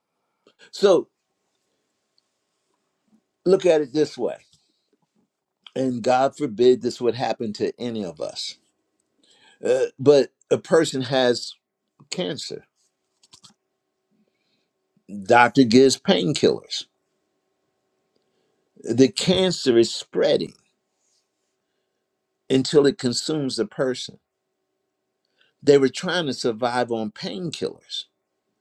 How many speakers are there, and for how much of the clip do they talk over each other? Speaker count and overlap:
one, no overlap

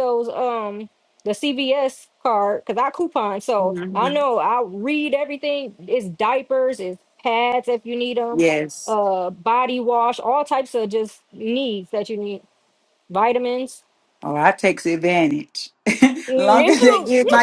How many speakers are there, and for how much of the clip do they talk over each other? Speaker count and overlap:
two, about 10%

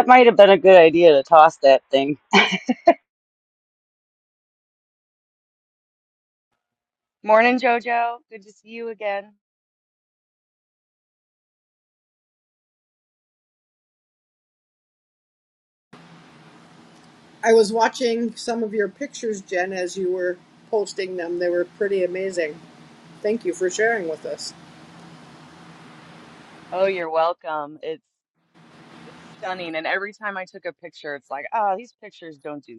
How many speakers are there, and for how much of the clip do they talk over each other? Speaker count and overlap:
three, no overlap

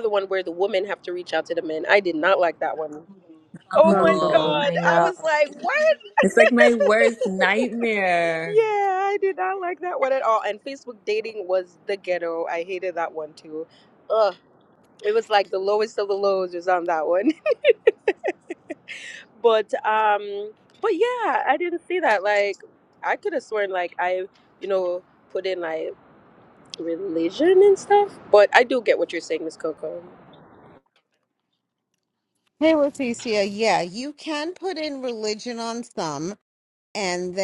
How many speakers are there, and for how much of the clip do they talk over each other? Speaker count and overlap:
three, about 4%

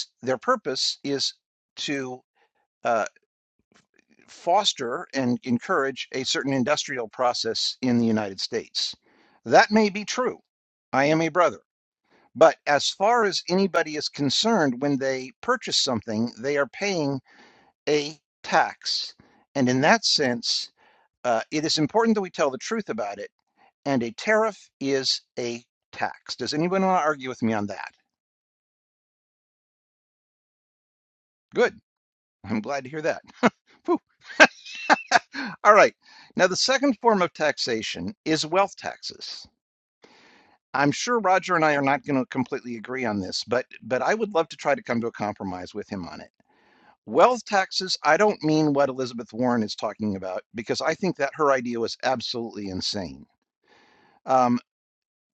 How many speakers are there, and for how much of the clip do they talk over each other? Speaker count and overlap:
one, no overlap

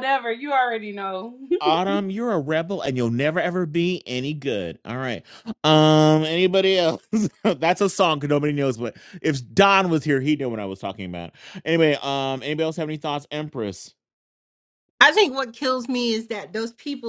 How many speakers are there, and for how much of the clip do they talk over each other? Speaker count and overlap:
three, no overlap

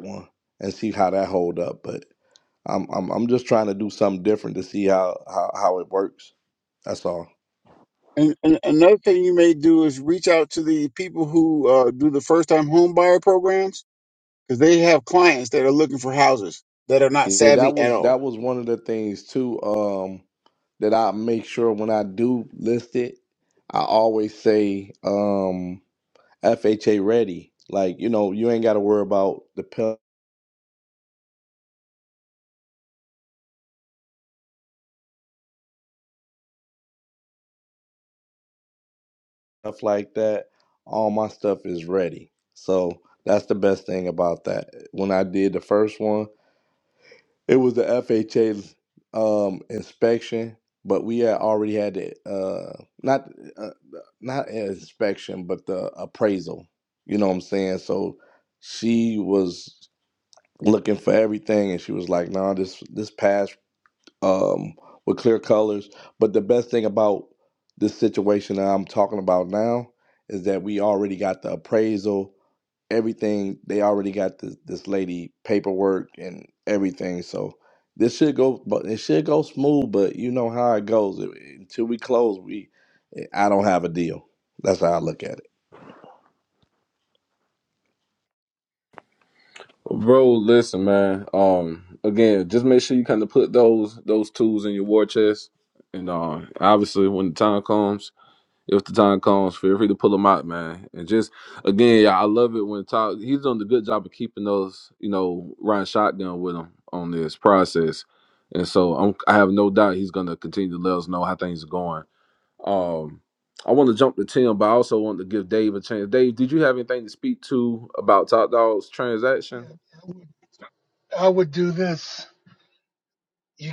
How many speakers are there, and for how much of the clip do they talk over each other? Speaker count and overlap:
four, about 1%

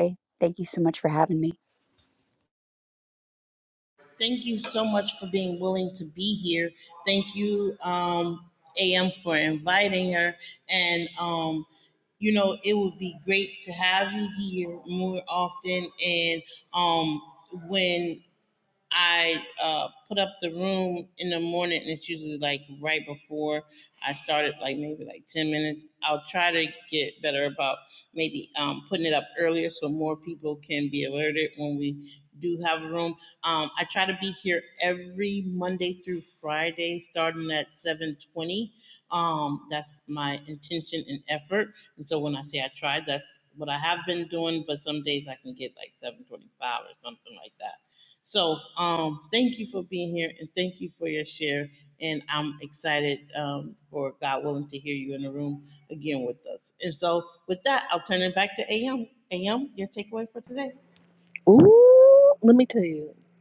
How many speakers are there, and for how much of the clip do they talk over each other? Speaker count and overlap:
three, no overlap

